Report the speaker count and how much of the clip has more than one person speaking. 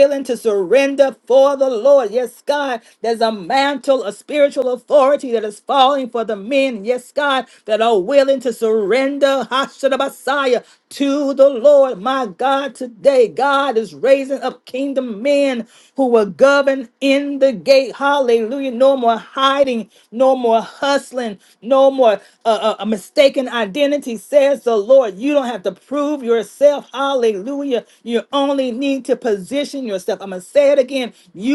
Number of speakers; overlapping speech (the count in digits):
1, no overlap